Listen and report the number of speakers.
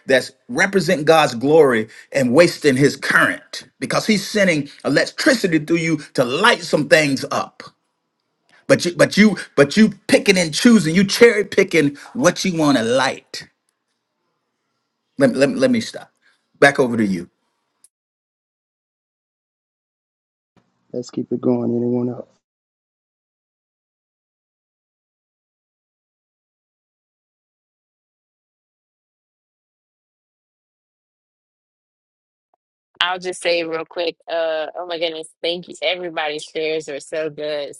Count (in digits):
3